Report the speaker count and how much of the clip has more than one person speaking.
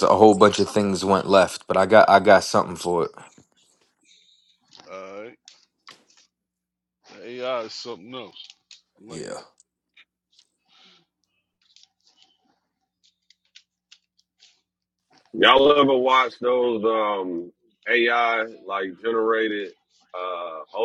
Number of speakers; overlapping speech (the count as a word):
three, about 1%